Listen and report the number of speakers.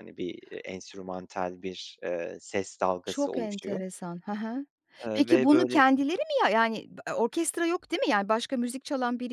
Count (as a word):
two